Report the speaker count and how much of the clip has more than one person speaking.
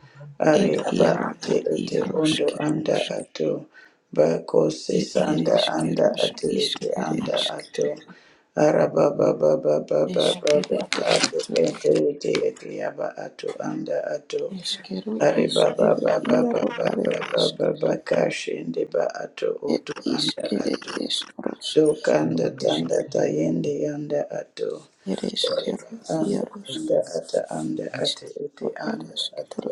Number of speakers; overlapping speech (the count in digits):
2, about 42%